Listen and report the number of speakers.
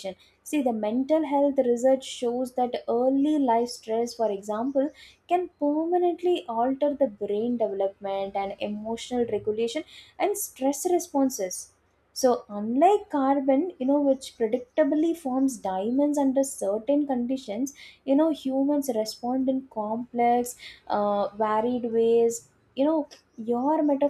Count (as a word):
one